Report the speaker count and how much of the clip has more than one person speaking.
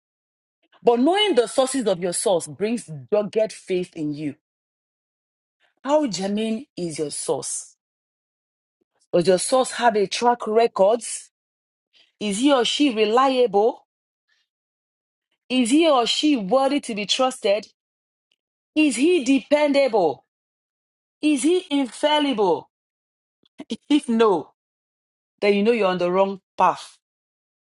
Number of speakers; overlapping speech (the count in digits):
1, no overlap